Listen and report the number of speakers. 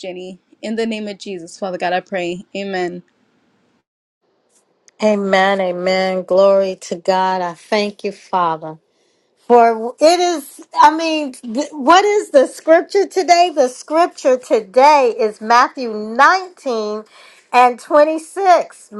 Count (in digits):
2